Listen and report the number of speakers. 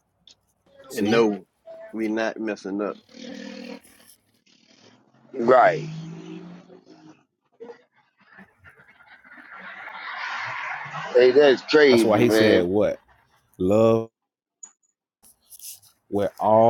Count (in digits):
3